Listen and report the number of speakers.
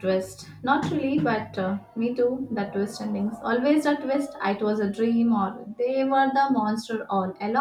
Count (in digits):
1